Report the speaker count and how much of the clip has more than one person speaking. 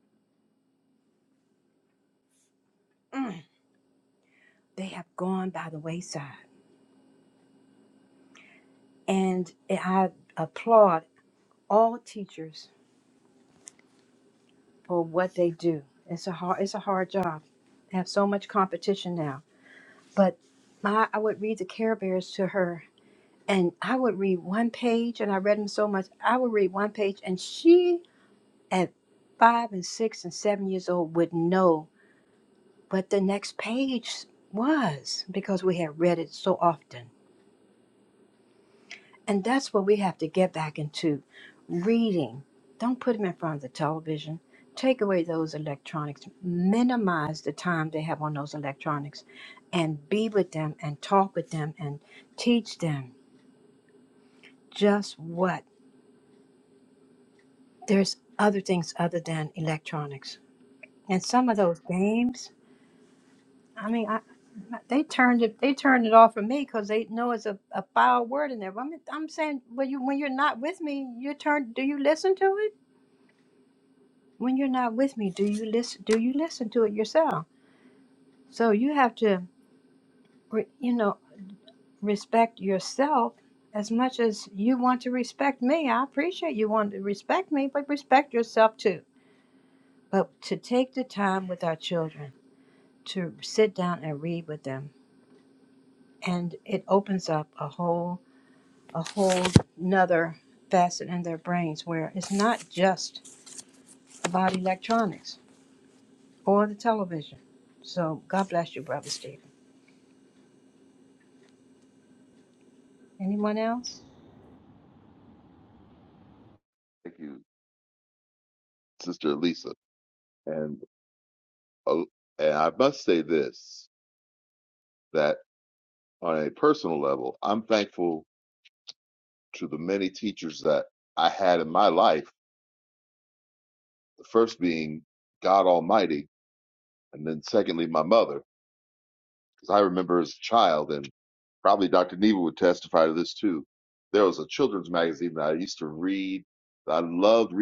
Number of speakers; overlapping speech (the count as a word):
two, no overlap